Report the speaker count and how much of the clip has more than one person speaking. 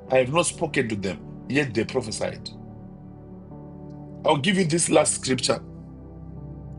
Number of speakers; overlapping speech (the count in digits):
1, no overlap